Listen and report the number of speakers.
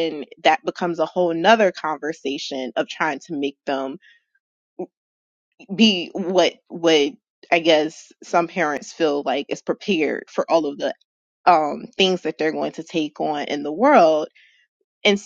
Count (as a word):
one